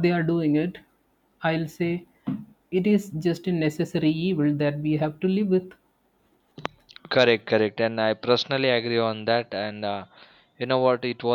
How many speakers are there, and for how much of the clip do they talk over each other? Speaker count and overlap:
two, no overlap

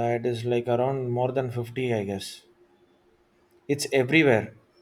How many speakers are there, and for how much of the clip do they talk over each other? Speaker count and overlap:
one, no overlap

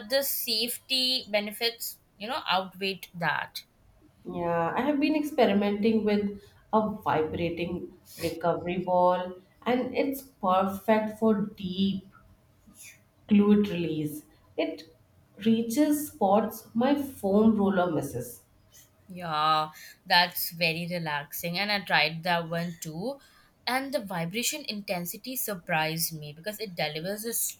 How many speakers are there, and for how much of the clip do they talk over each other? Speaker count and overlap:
two, no overlap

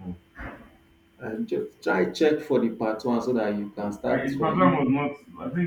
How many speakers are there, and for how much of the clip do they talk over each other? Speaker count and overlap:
two, about 13%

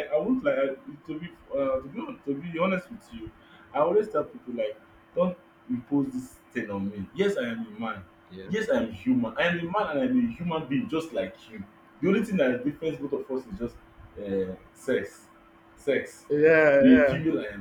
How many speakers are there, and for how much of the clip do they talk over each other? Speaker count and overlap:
two, about 2%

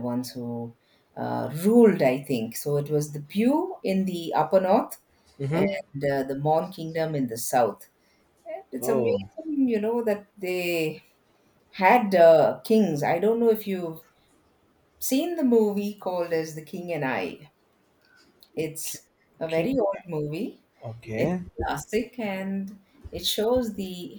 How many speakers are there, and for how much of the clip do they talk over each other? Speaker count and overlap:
two, about 5%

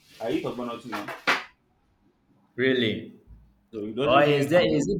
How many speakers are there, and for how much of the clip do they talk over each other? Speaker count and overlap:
two, about 14%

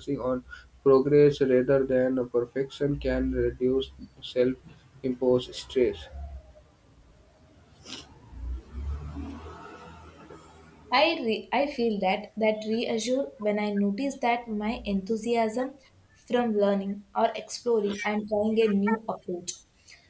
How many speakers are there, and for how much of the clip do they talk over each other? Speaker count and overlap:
two, no overlap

